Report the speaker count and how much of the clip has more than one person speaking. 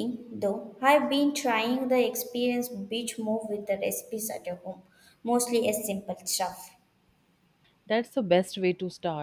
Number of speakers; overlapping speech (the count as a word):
two, no overlap